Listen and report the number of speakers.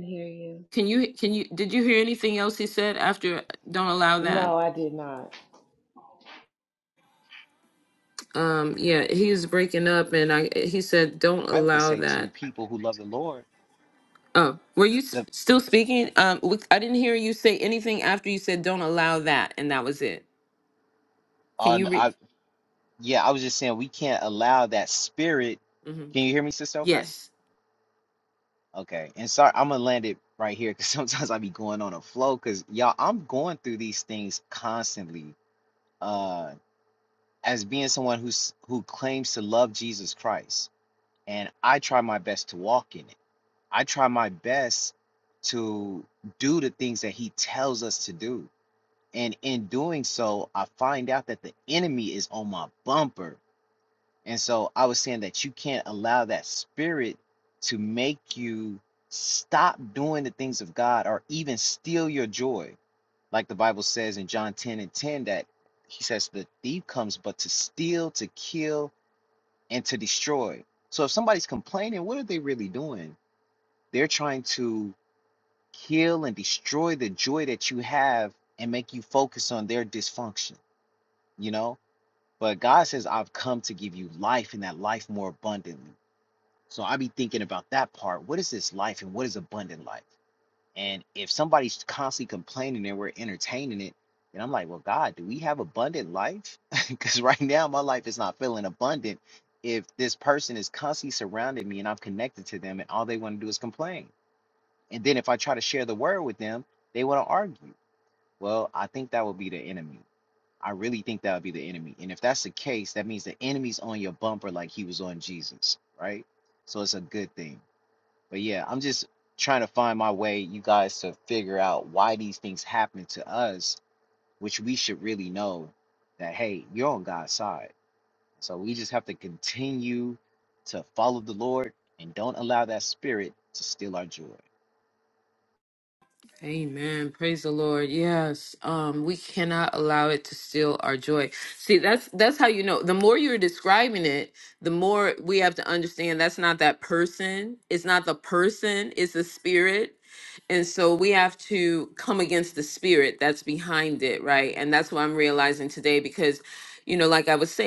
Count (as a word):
three